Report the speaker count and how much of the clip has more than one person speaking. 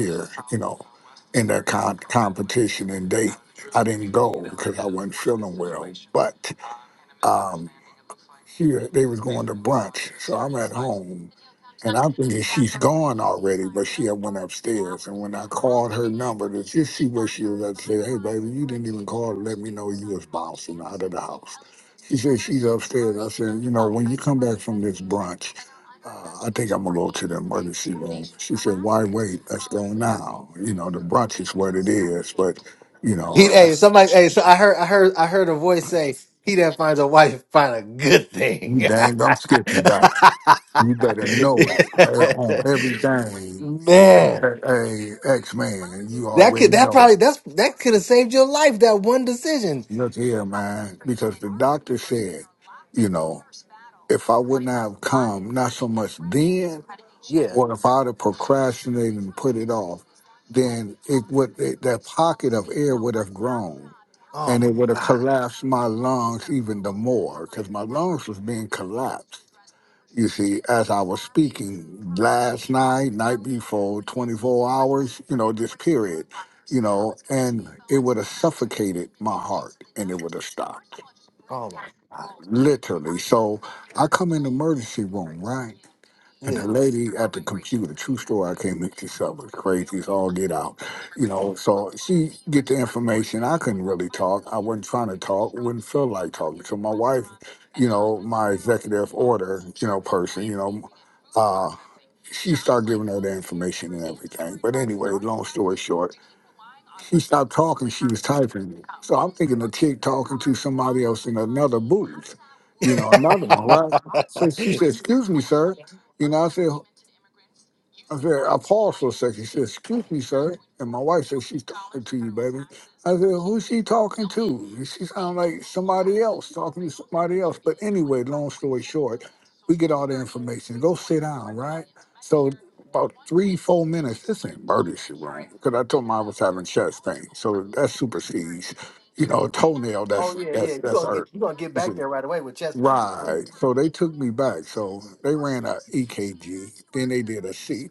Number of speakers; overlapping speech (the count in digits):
2, about 2%